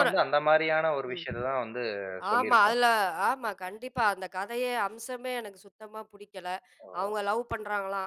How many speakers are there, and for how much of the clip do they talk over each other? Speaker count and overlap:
2, about 11%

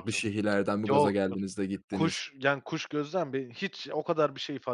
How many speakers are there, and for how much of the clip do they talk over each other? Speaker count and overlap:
2, about 19%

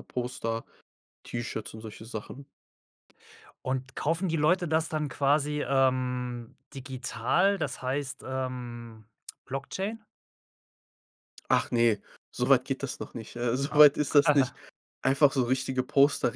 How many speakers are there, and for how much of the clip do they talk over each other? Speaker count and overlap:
2, about 1%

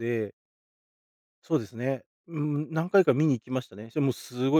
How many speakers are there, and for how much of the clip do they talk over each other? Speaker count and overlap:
1, no overlap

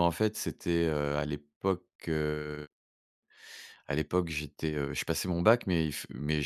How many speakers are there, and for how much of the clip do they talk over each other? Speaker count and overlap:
1, no overlap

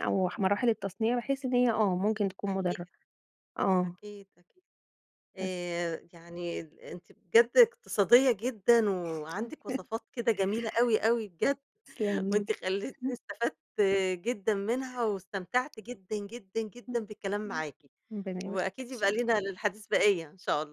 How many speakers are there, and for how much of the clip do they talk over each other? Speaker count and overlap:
2, about 7%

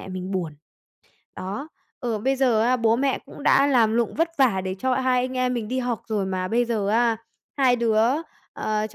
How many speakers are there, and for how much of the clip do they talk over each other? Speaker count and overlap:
1, no overlap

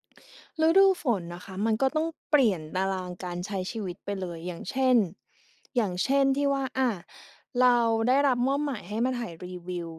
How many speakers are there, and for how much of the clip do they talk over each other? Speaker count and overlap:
1, no overlap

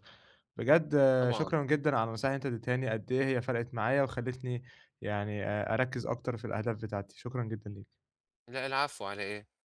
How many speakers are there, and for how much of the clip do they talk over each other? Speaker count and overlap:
2, about 4%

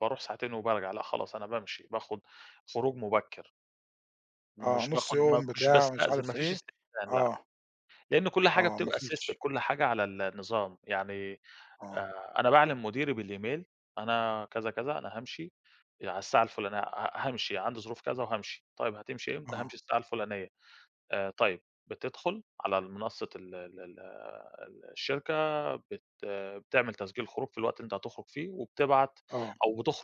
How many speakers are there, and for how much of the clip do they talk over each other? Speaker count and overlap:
2, about 11%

